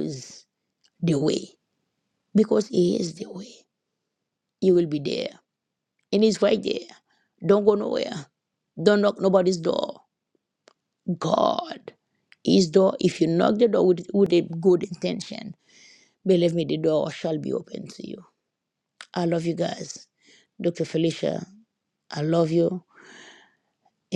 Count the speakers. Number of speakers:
one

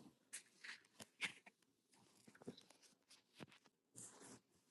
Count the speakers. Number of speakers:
zero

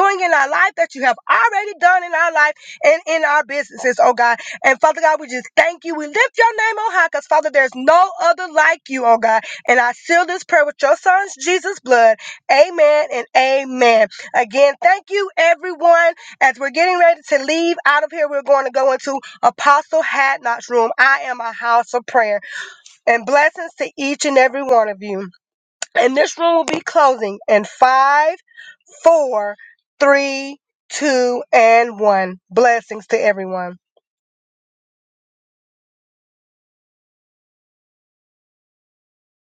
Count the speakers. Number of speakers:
one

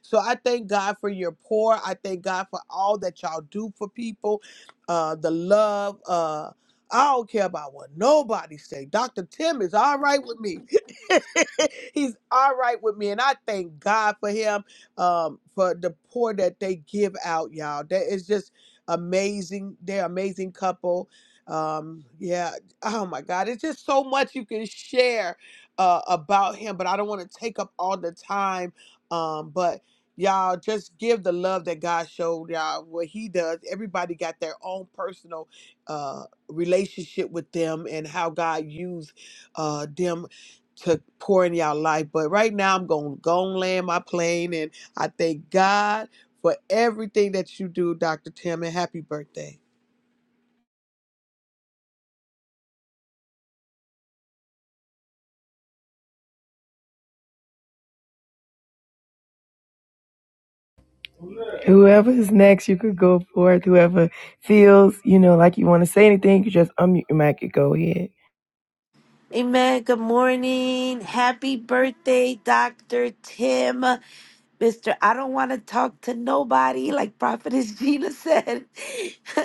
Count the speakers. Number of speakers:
three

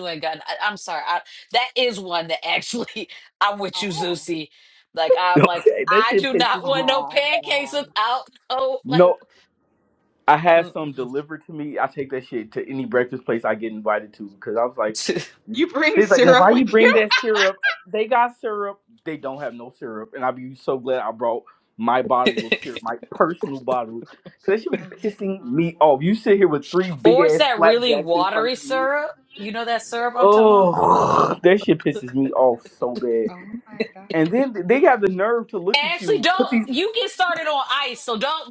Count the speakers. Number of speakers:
three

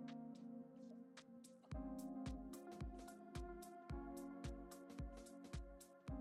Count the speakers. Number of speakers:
zero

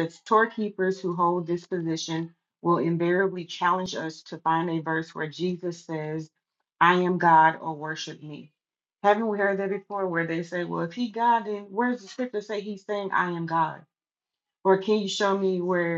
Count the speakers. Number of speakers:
one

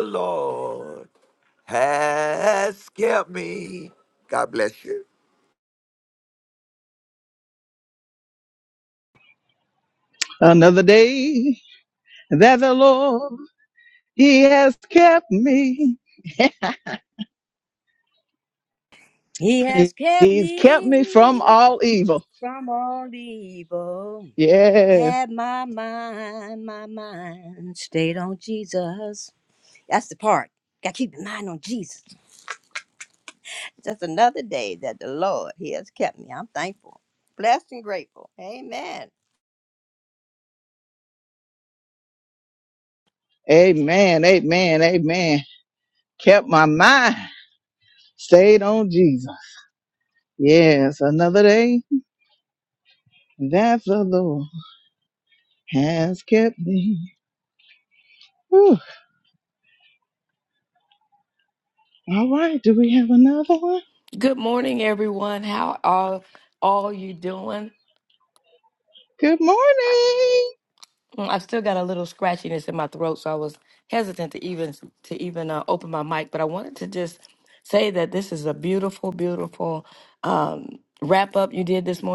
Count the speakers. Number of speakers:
four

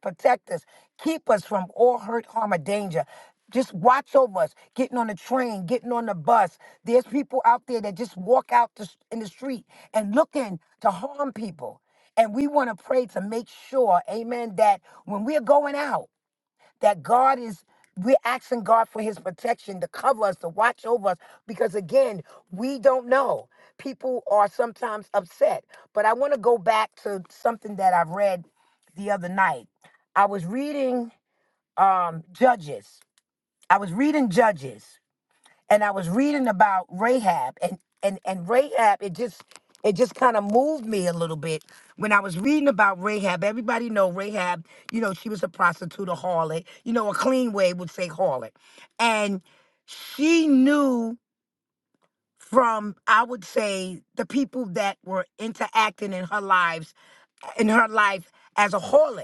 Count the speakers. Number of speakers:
one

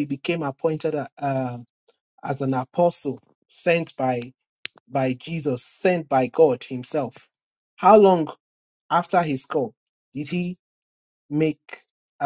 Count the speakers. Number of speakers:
one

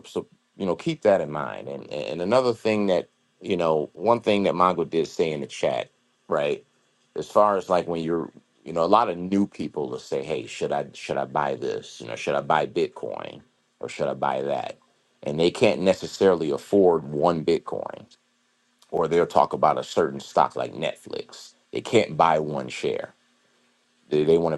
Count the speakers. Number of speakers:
one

